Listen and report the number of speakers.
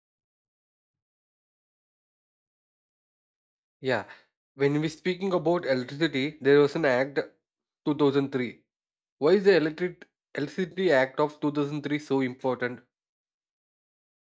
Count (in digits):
1